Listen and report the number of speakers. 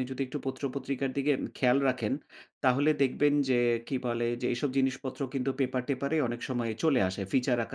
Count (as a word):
one